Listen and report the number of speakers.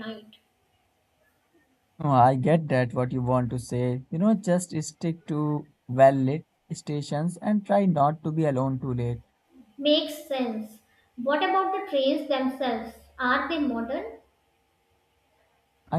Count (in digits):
2